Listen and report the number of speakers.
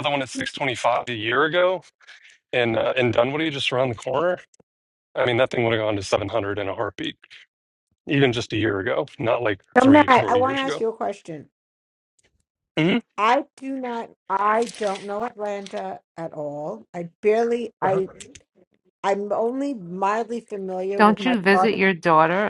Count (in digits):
3